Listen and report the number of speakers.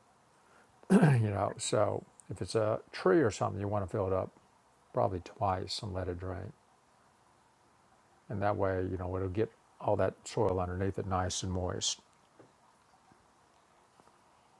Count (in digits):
1